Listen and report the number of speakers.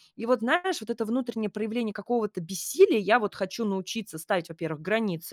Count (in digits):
1